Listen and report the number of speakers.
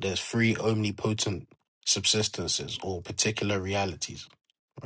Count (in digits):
1